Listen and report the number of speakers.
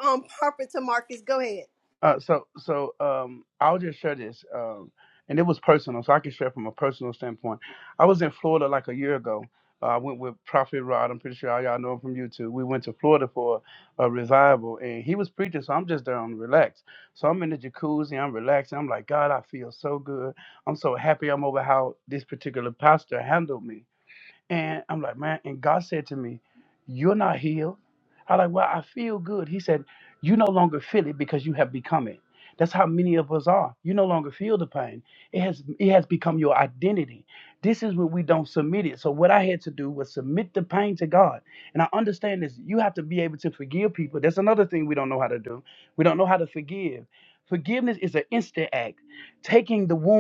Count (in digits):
2